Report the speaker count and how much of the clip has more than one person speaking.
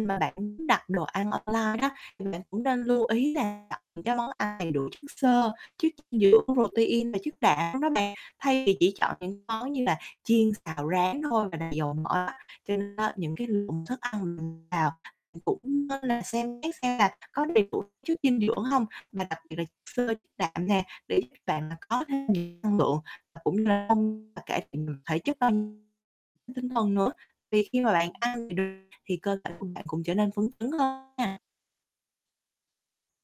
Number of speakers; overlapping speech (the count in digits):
1, no overlap